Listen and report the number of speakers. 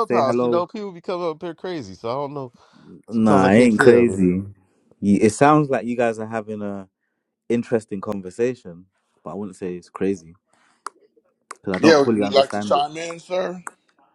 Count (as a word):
three